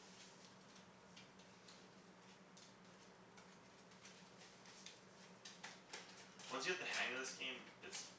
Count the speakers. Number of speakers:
1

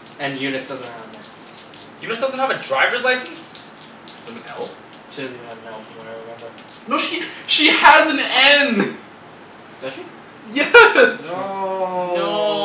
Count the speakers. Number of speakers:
4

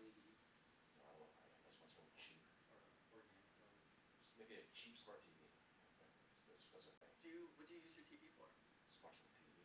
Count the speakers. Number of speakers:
3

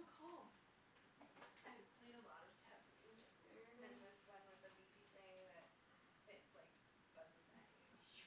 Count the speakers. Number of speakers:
2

